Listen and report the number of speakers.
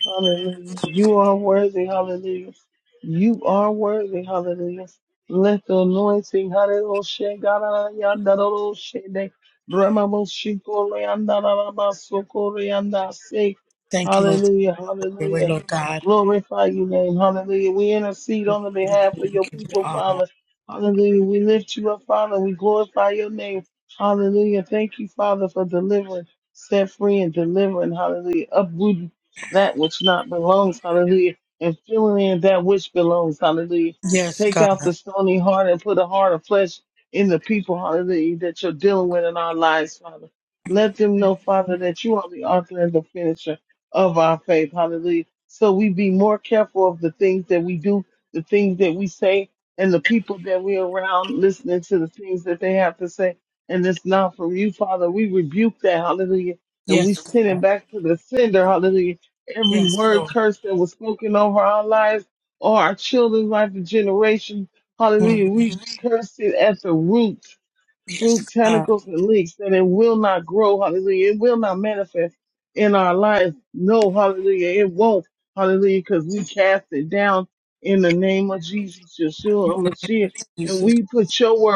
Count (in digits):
2